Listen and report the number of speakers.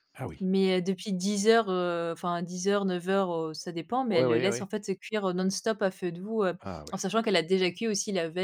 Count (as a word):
two